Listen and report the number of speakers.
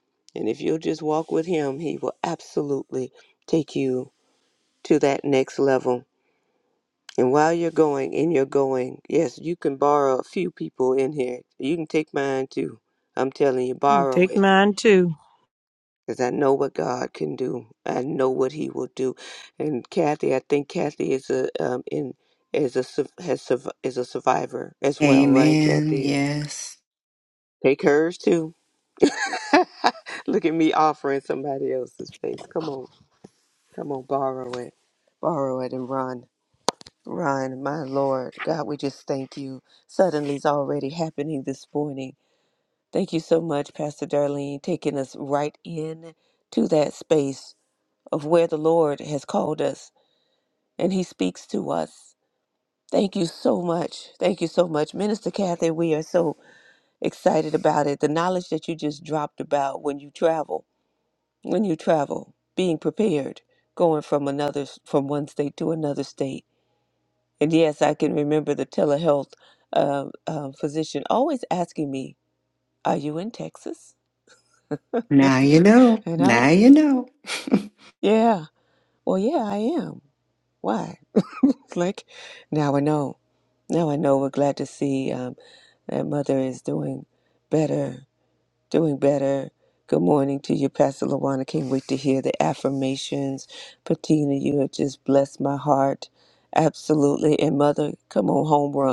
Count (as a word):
three